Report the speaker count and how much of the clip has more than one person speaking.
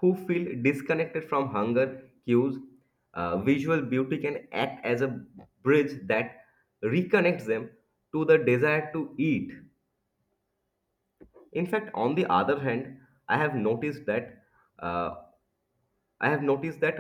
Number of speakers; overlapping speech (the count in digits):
1, no overlap